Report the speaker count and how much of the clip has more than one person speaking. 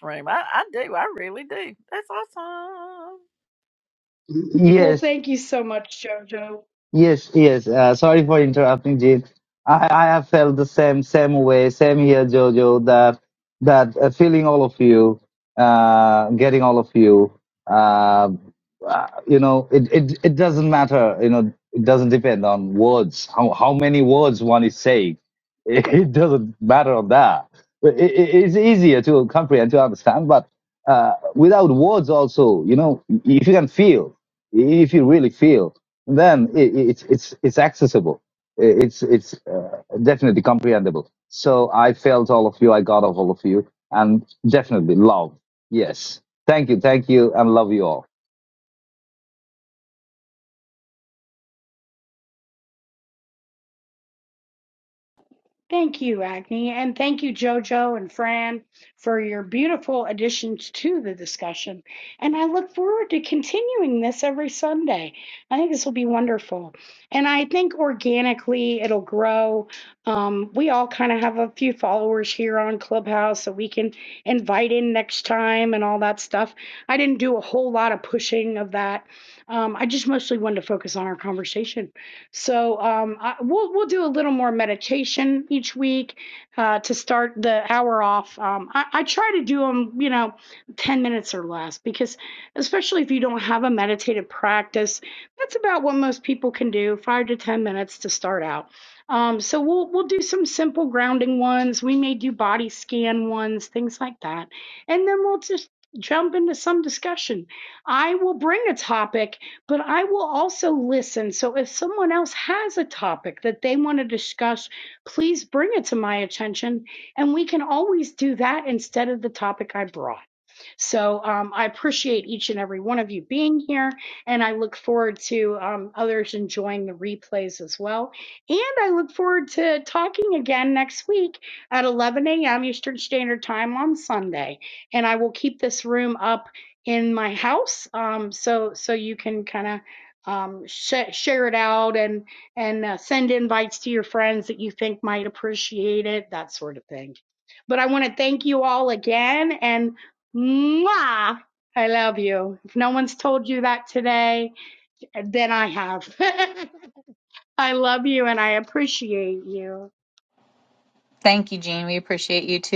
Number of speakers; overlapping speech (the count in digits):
4, under 1%